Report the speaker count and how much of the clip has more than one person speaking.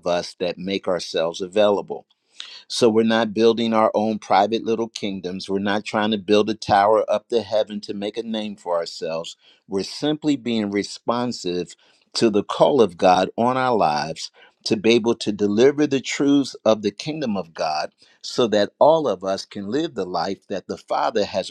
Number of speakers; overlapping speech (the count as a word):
one, no overlap